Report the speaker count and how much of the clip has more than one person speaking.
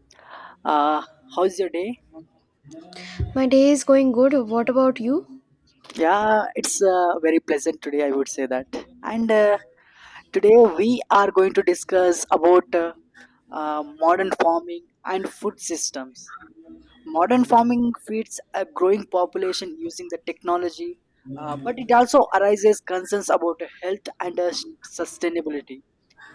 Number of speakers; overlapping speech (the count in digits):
2, no overlap